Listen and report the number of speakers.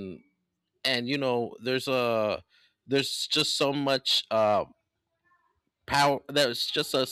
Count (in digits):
1